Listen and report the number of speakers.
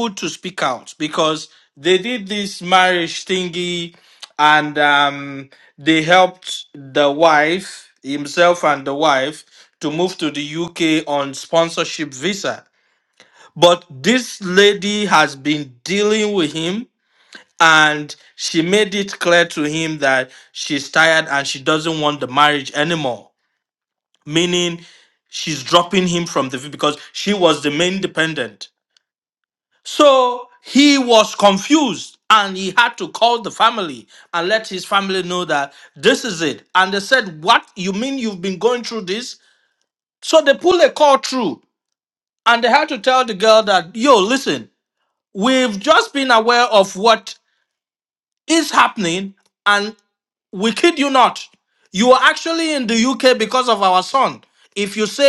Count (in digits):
1